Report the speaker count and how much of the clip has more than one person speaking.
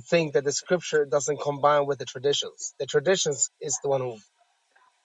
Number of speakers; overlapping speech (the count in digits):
1, no overlap